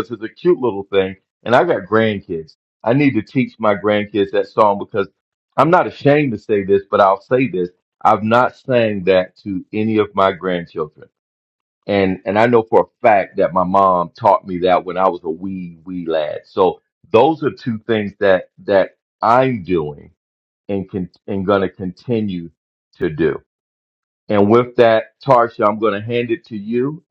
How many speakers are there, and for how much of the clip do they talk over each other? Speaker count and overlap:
1, no overlap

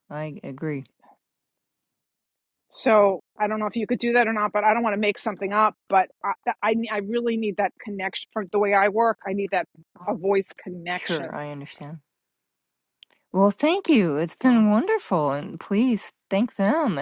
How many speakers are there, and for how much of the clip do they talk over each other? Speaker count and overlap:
2, about 3%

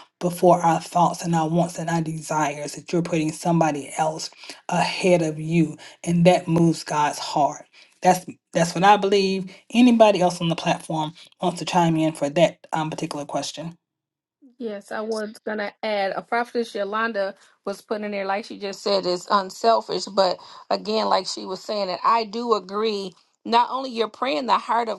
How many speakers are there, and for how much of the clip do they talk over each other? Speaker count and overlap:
2, no overlap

